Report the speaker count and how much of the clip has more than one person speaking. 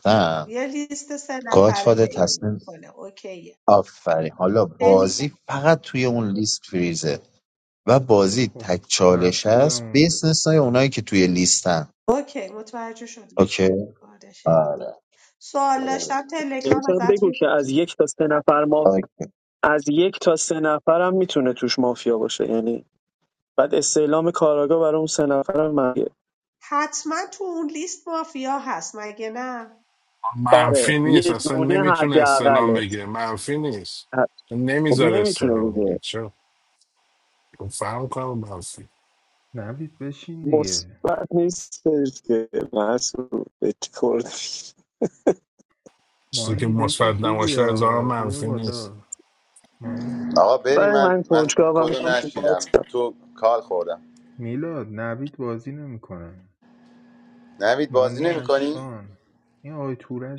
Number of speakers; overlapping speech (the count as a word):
six, about 23%